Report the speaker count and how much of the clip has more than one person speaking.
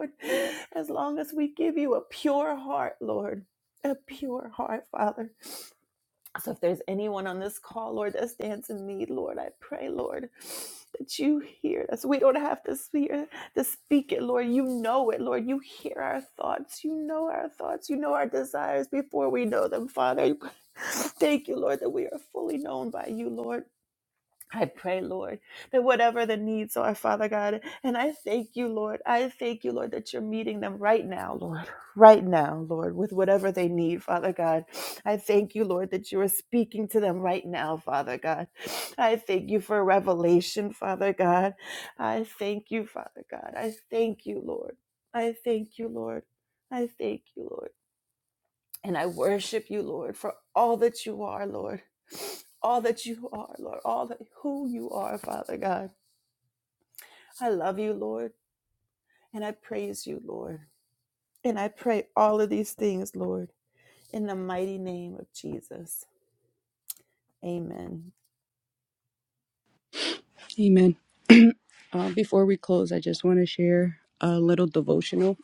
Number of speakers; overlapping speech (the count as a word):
two, no overlap